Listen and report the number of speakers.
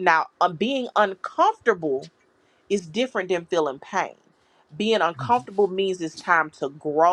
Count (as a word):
one